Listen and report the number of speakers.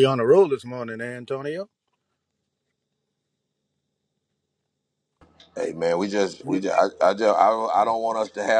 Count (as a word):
two